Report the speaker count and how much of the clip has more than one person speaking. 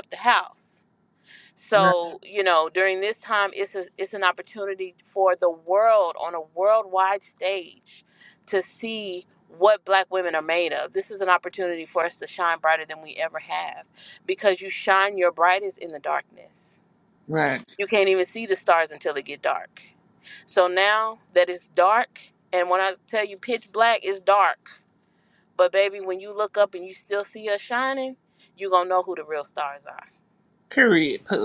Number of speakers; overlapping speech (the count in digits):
2, about 1%